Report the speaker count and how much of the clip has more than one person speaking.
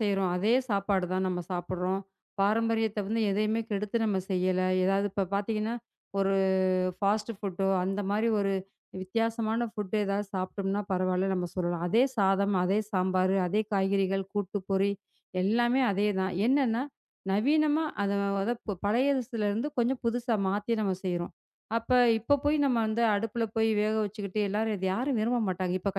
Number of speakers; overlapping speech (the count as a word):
one, no overlap